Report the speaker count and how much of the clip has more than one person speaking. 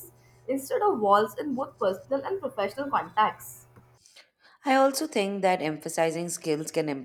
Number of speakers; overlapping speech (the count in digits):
2, no overlap